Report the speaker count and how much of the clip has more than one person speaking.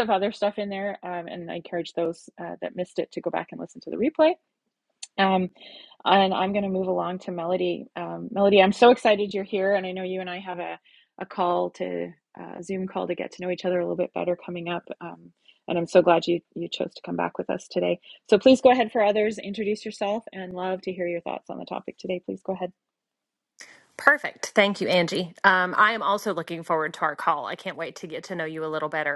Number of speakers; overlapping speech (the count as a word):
two, no overlap